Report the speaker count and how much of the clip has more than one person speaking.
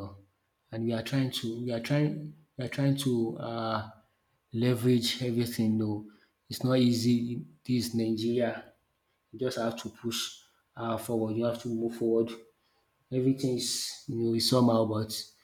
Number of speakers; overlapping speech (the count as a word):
one, no overlap